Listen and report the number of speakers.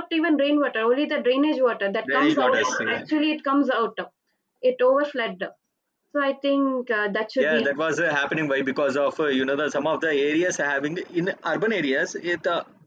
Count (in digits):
2